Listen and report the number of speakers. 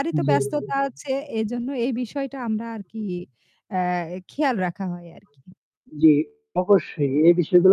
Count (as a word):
two